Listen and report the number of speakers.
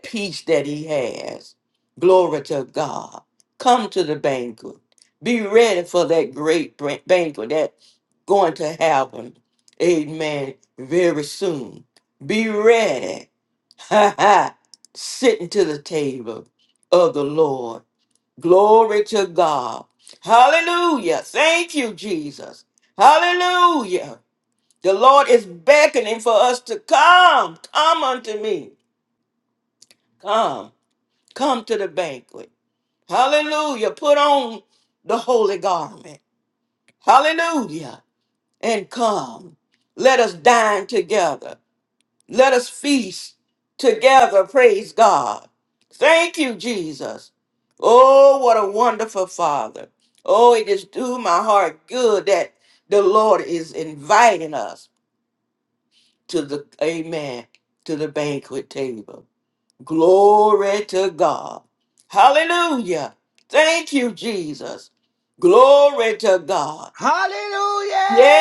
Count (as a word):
two